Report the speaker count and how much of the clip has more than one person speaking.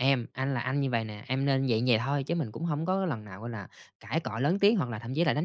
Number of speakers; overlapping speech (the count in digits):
1, no overlap